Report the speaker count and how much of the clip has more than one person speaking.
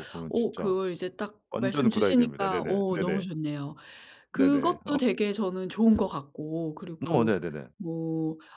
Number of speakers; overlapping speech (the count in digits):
2, about 40%